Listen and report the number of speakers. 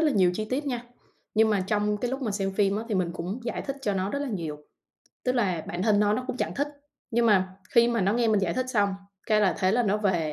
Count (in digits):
1